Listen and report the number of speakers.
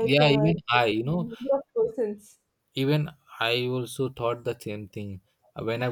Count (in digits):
2